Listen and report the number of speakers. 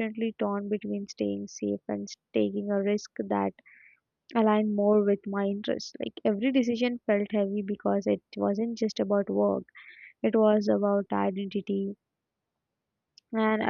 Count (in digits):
1